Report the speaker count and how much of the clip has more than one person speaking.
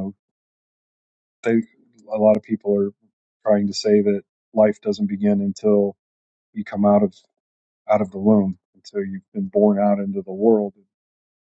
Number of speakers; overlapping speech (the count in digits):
1, no overlap